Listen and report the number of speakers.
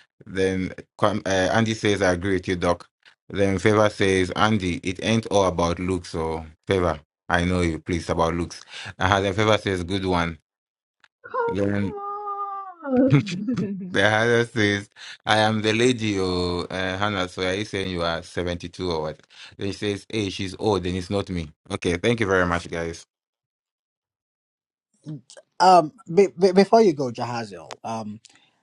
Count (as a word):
three